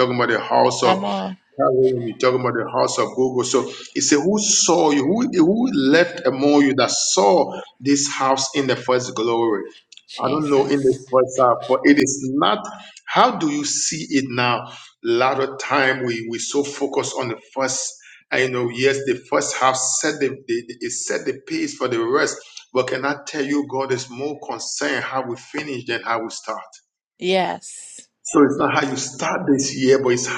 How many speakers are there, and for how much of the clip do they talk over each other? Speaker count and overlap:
2, about 3%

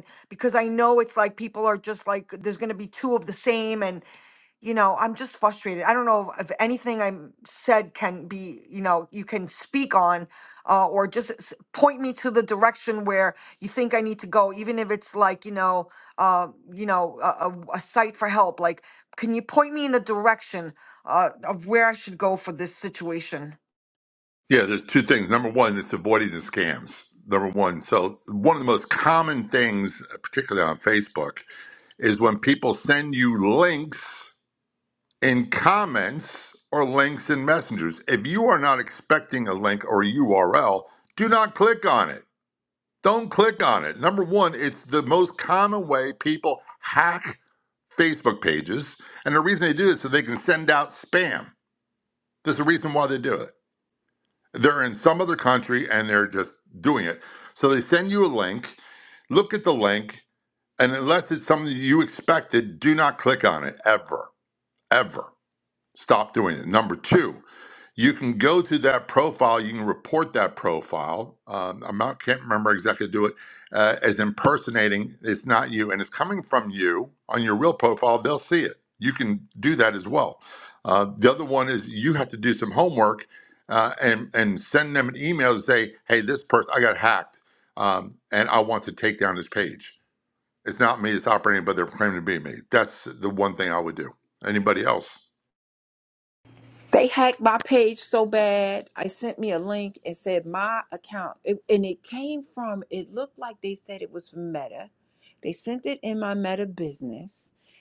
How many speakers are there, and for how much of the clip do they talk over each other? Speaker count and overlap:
3, no overlap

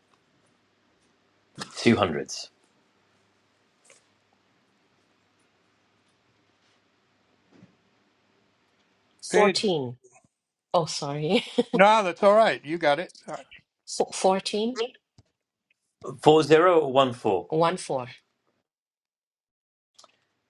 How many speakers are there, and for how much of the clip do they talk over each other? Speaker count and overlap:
3, about 1%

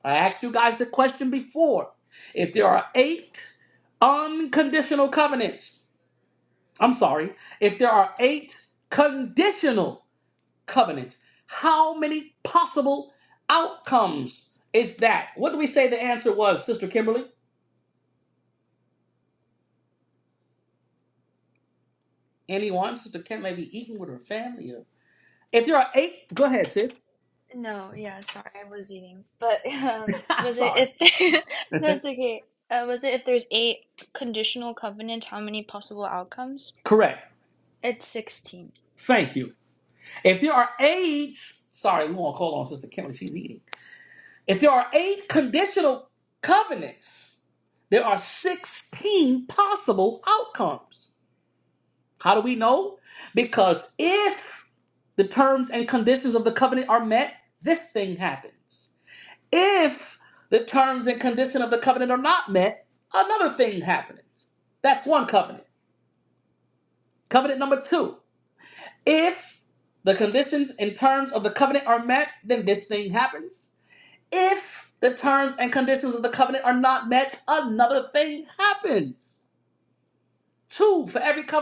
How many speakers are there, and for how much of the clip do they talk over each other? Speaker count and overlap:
2, under 1%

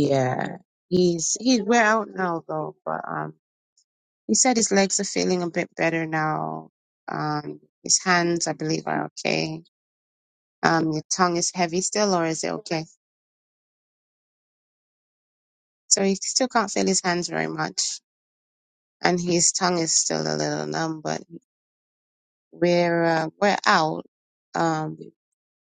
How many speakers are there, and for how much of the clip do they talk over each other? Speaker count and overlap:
1, no overlap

